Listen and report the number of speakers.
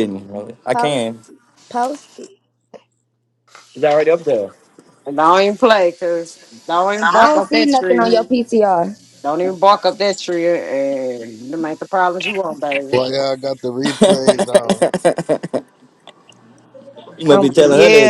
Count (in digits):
4